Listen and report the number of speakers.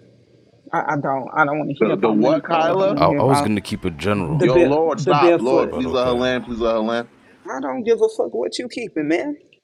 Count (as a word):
three